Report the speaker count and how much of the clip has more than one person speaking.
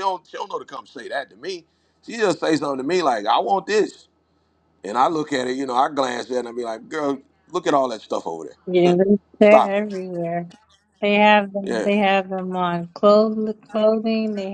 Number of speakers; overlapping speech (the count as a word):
two, about 4%